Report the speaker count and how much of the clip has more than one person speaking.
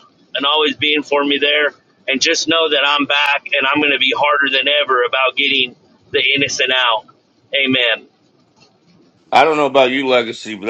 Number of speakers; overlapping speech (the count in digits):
2, no overlap